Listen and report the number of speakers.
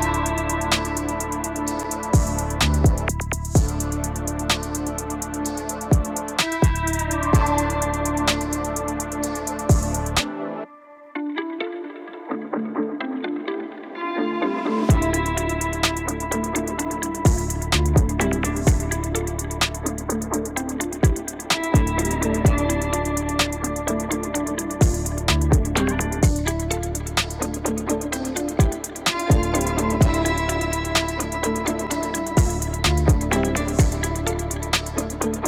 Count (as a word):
zero